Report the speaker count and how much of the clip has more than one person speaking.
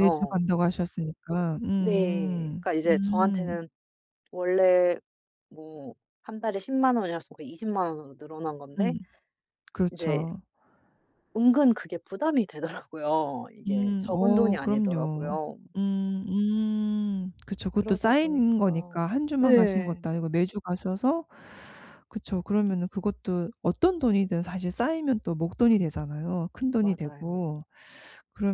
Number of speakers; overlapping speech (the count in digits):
2, about 23%